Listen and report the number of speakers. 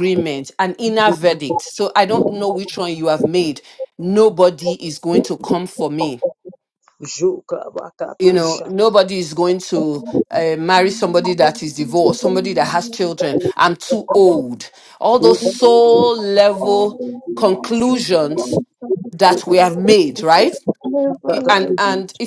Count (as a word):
three